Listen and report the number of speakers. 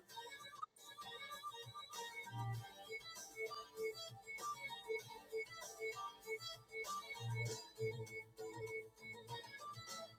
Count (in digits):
0